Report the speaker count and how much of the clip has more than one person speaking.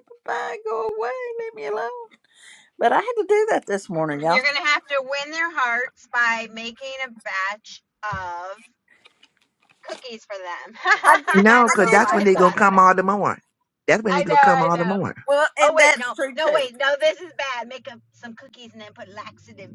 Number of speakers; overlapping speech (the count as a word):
three, about 20%